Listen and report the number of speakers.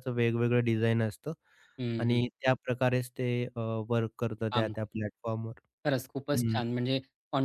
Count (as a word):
two